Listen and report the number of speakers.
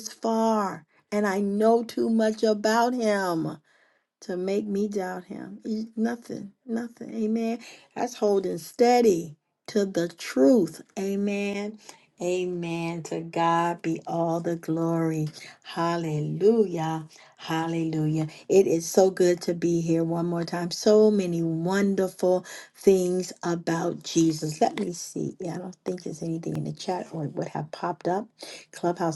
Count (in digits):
1